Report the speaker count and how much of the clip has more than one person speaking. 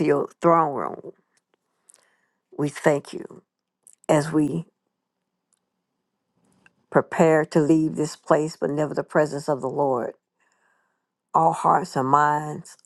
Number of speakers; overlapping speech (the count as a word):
one, no overlap